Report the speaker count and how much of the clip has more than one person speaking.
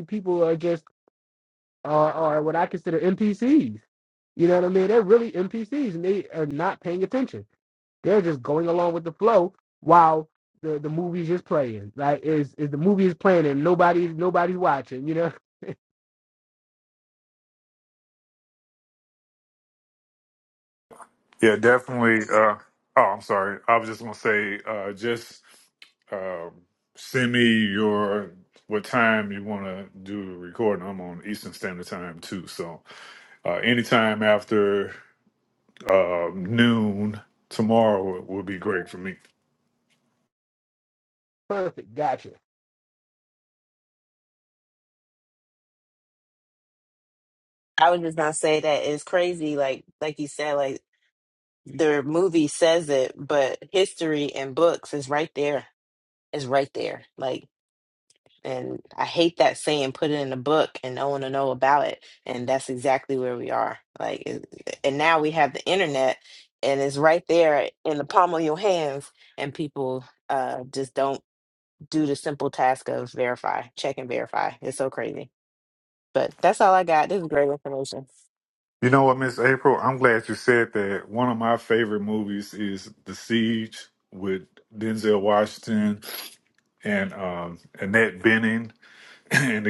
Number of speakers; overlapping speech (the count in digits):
3, no overlap